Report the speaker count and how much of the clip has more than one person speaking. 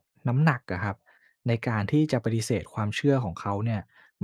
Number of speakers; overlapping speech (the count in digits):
1, no overlap